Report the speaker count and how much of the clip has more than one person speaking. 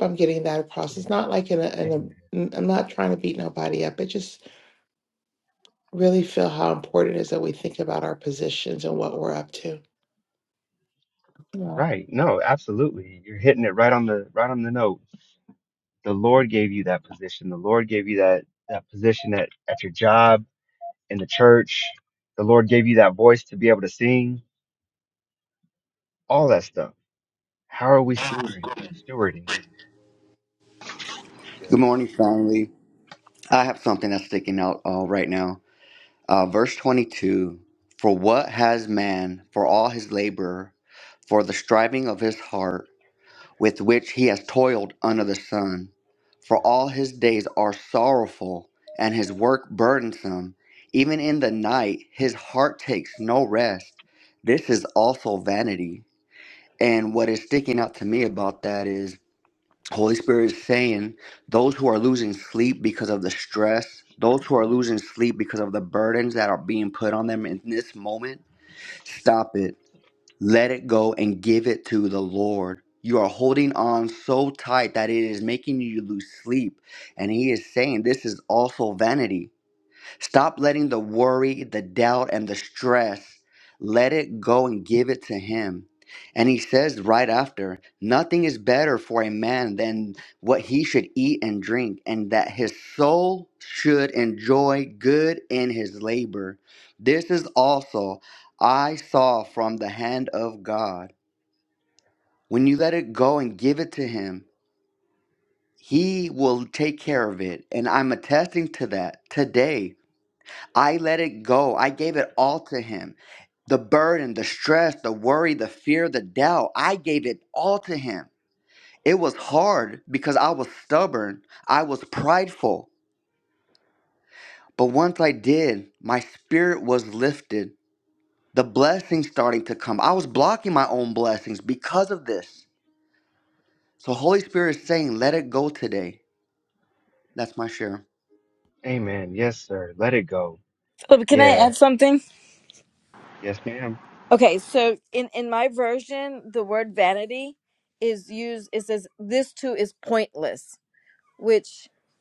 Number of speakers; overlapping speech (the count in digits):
4, under 1%